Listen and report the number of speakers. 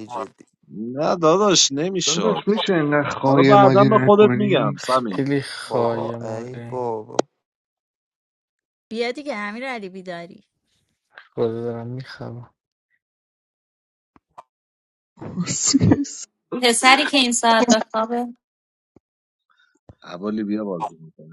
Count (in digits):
6